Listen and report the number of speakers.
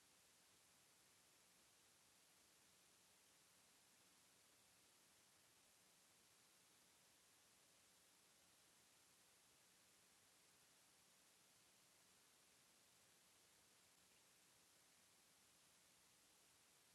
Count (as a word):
zero